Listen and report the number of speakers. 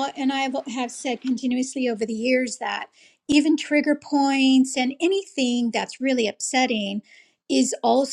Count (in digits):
1